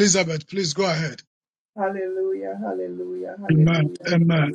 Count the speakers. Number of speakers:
two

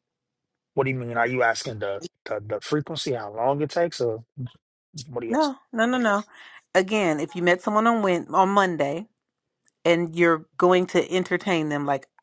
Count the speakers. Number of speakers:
two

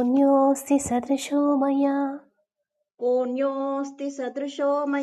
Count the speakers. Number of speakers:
two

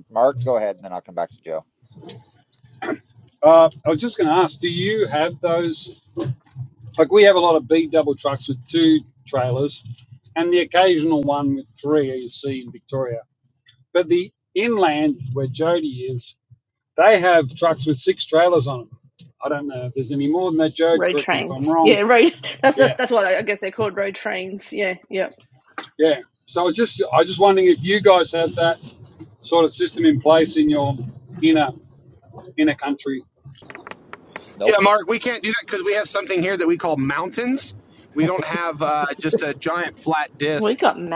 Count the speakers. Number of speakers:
four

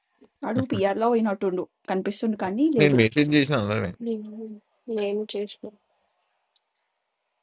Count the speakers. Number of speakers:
three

